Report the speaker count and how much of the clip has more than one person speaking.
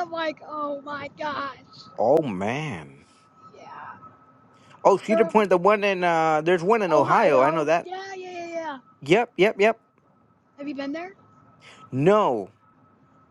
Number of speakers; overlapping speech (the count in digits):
2, about 10%